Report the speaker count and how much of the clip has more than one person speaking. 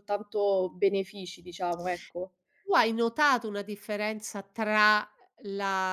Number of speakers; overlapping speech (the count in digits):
2, no overlap